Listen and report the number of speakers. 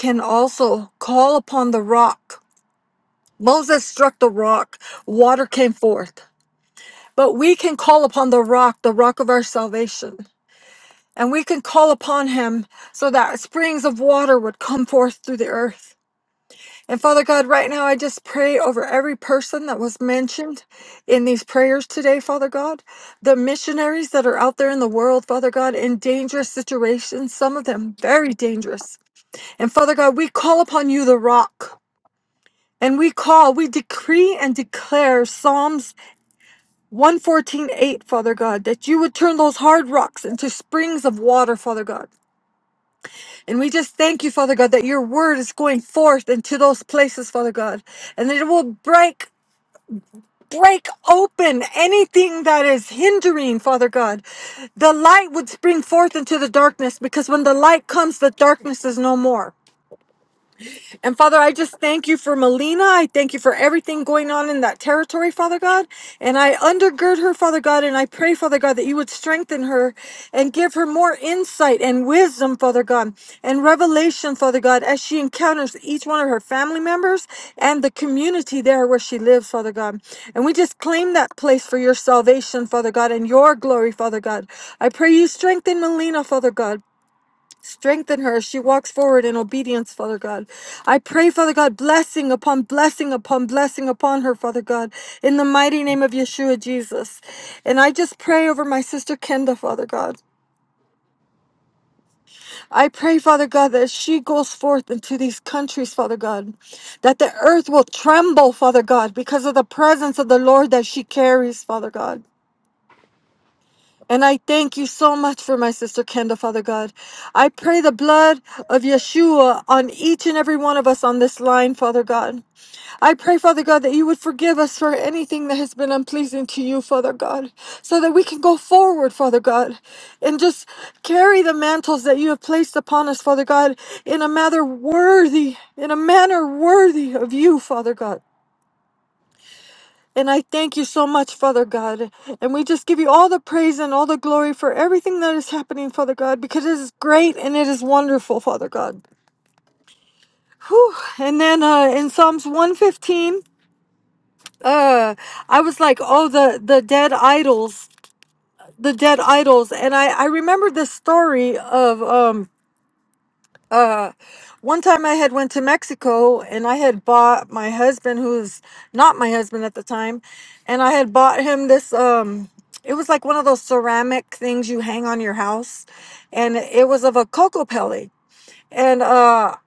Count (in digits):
1